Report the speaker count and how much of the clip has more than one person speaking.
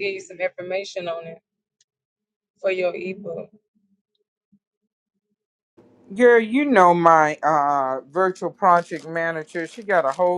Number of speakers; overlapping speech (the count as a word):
two, no overlap